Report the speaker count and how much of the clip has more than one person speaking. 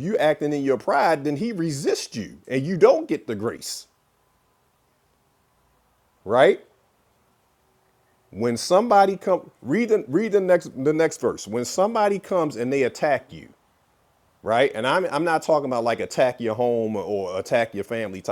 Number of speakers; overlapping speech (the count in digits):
1, no overlap